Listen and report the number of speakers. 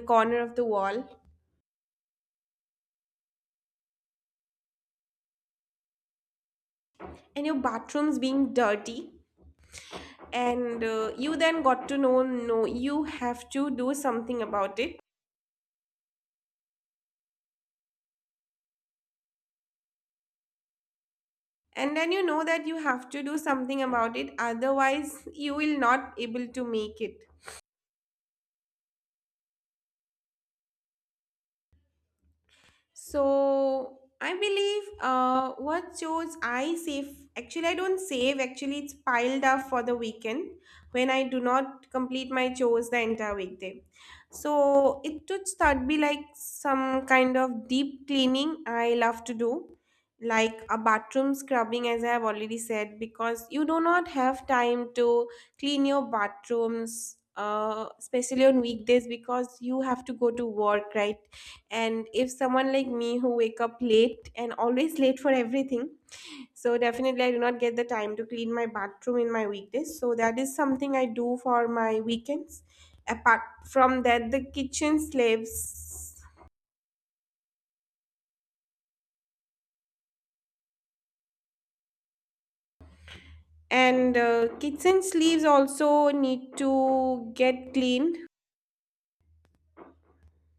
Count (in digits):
1